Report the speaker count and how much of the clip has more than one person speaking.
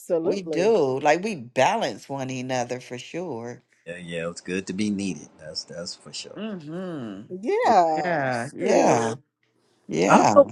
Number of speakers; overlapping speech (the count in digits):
3, about 17%